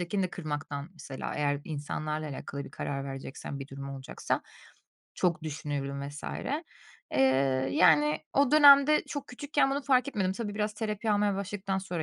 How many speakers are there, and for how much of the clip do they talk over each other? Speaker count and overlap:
one, no overlap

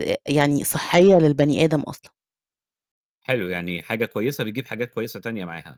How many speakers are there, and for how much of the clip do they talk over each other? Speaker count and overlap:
two, no overlap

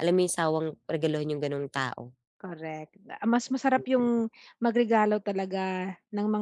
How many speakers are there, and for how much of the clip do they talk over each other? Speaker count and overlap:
two, about 7%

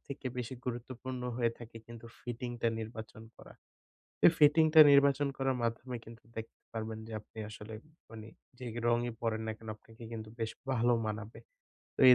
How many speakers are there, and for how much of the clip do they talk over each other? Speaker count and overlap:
one, no overlap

